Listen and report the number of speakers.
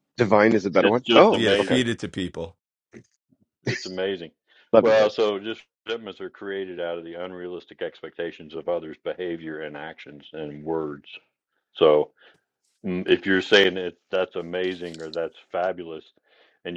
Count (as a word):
three